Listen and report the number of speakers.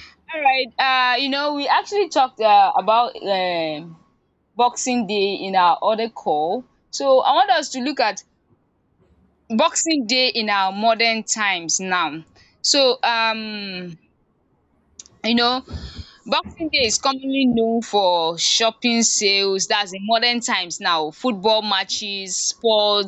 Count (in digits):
1